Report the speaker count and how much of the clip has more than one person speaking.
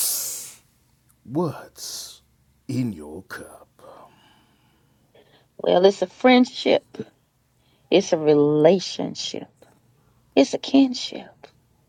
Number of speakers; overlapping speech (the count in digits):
2, no overlap